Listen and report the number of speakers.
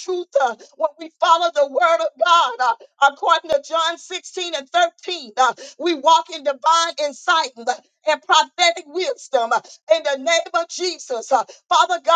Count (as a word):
one